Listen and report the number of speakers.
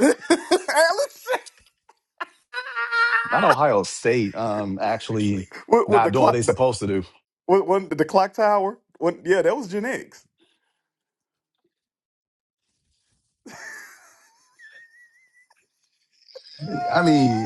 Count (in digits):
2